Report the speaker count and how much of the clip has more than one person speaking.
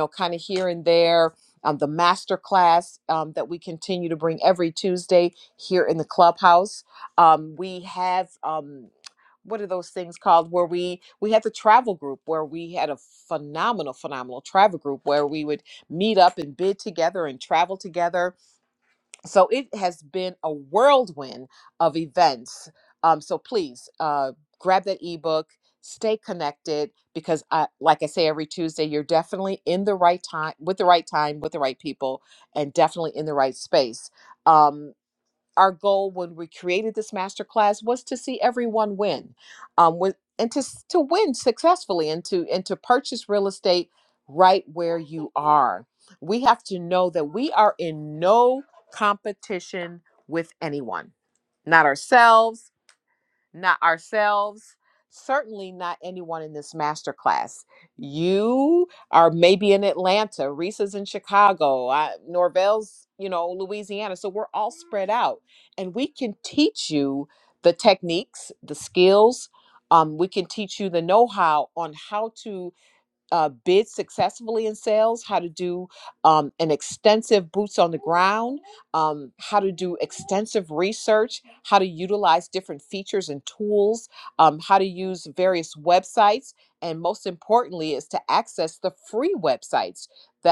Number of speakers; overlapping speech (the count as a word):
one, no overlap